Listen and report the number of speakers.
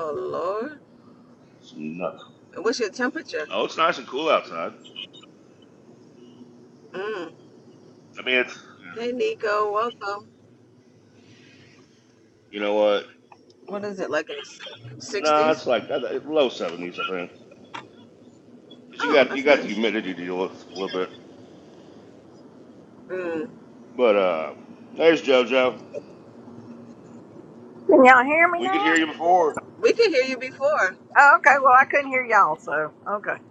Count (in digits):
3